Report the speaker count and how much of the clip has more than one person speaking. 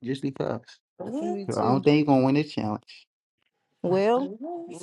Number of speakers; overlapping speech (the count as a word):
two, about 7%